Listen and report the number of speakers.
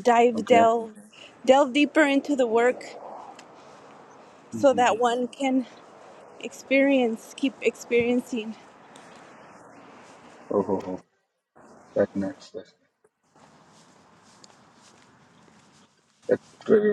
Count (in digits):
2